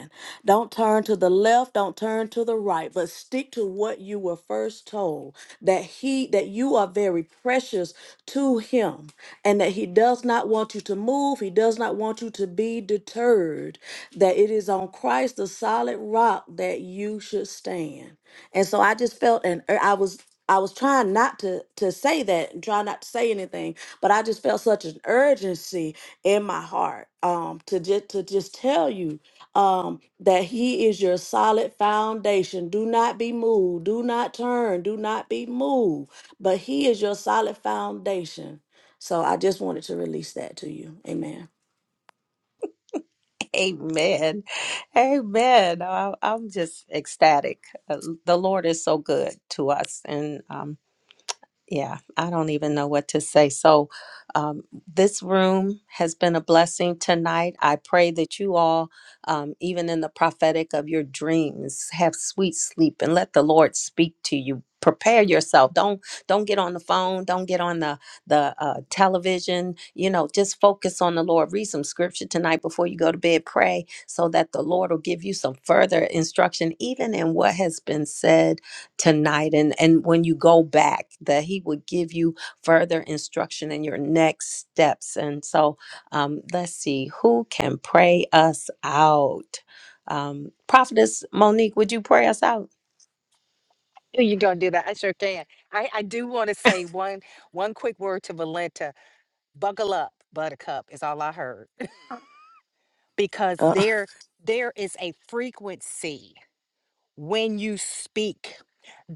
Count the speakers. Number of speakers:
3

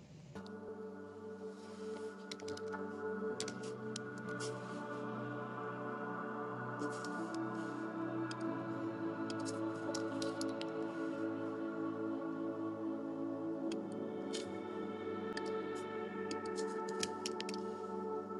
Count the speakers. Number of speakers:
0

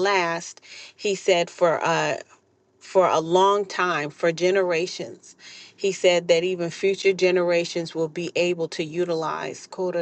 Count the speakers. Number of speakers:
1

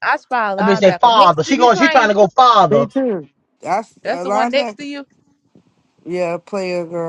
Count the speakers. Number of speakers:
3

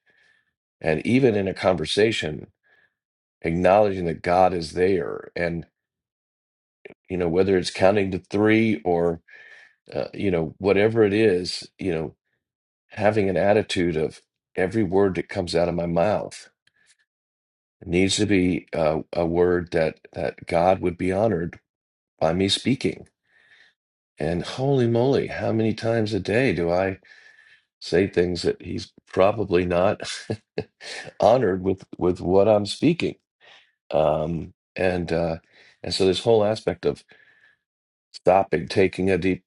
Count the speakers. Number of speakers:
1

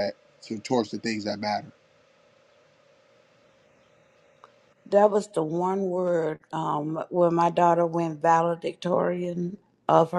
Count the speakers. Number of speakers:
2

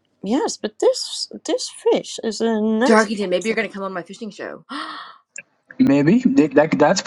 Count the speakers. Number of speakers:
3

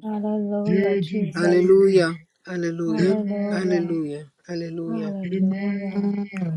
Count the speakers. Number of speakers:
3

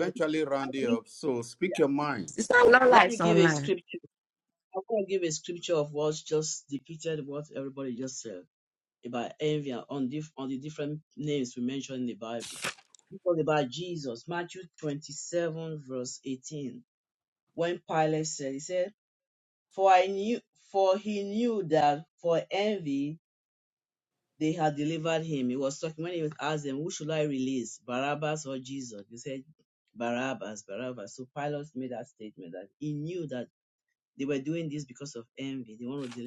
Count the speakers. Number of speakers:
3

